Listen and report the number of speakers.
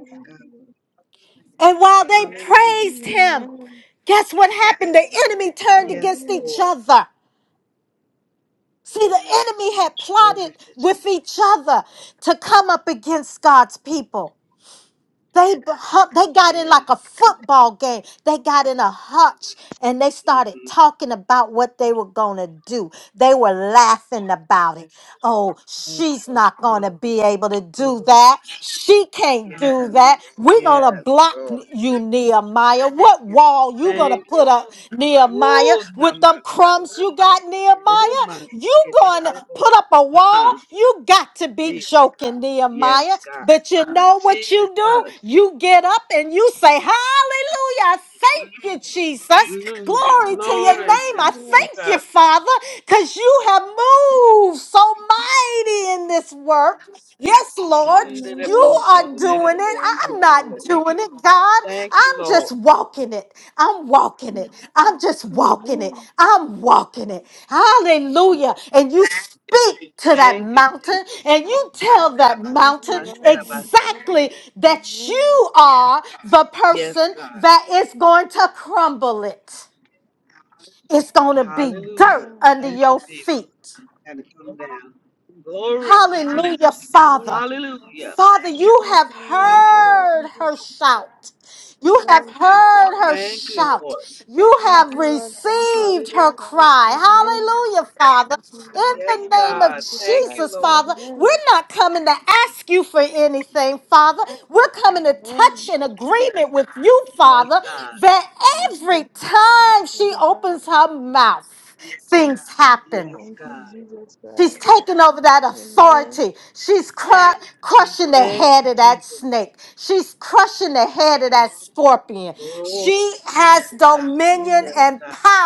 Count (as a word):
three